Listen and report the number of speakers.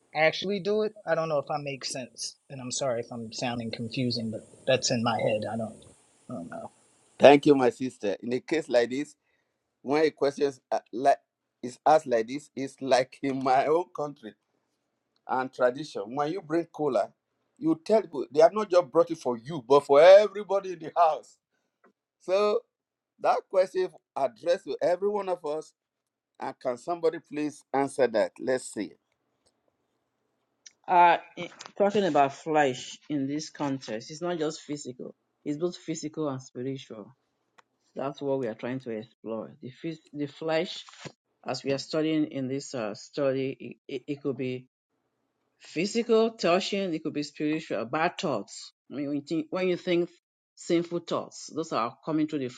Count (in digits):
3